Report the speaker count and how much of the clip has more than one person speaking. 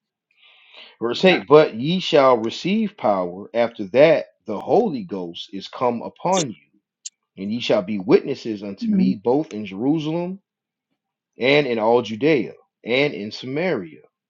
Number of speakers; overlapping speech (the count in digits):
1, no overlap